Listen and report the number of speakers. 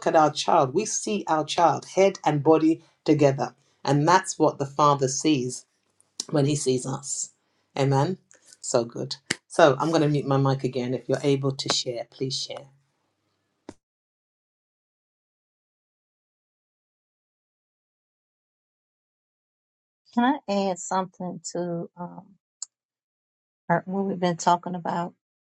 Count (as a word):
two